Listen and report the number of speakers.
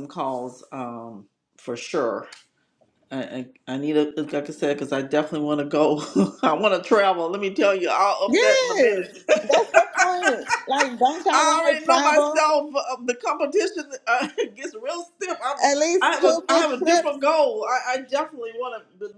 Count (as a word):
two